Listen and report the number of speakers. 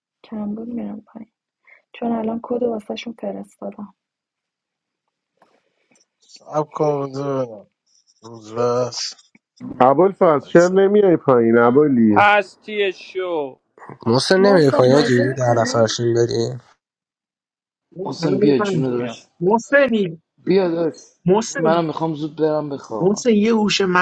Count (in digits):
7